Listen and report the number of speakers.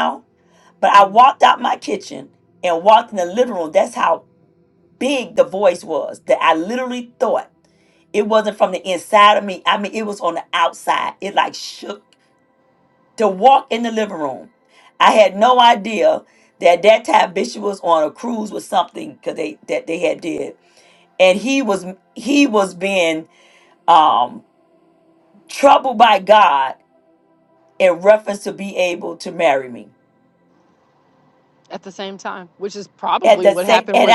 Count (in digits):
2